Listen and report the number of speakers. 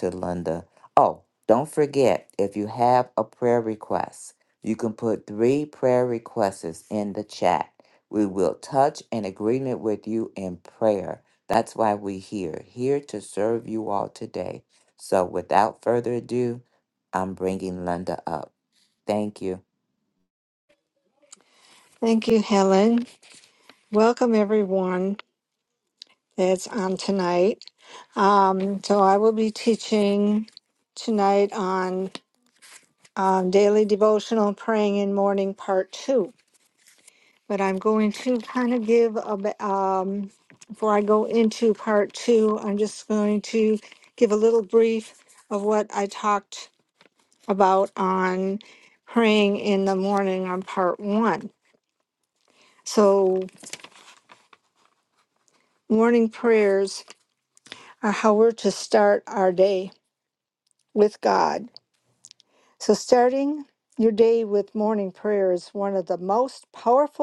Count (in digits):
2